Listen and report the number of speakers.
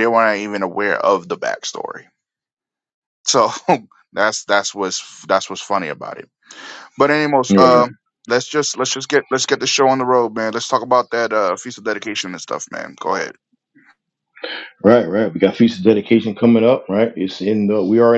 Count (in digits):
2